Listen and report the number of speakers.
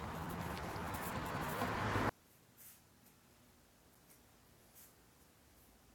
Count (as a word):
zero